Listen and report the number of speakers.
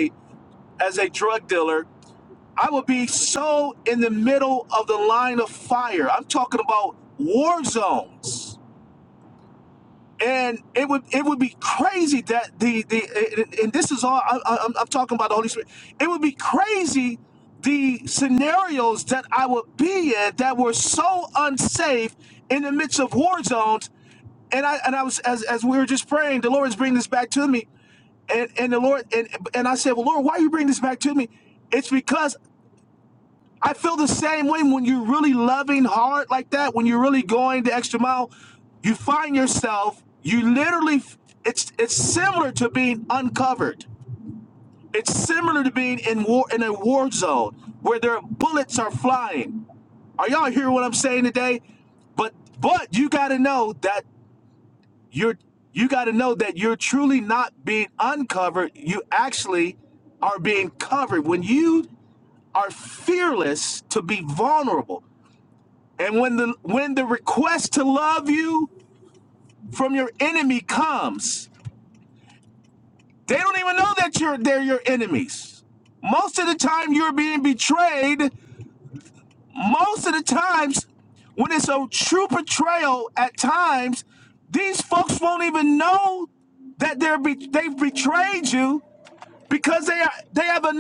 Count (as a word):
one